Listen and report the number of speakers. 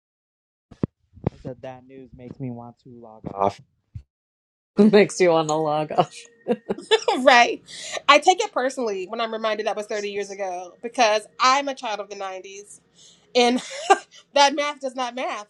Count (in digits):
3